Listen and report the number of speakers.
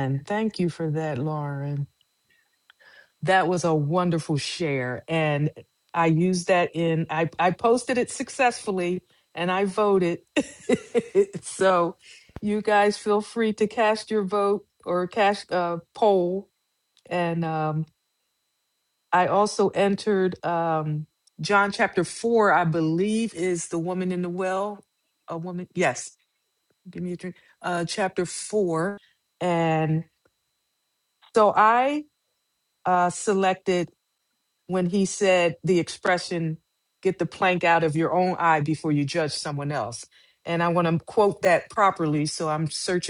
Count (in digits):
1